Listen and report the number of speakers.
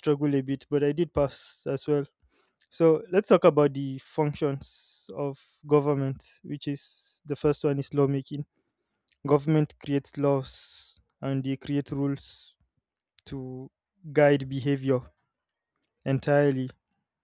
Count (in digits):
1